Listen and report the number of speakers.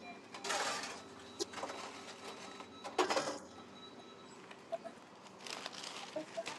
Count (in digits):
0